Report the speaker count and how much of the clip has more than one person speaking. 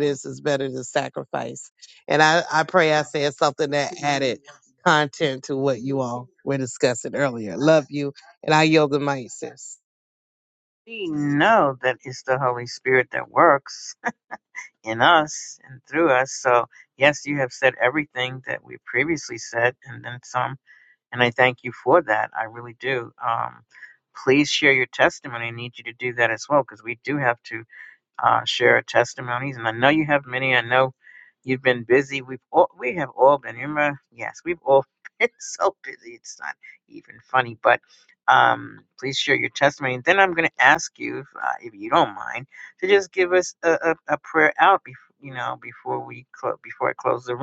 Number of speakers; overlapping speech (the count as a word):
two, no overlap